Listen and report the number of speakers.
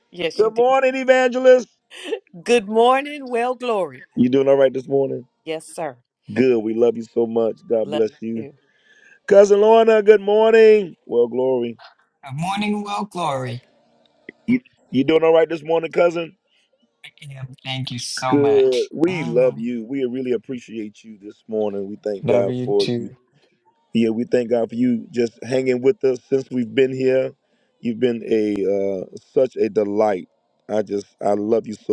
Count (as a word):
three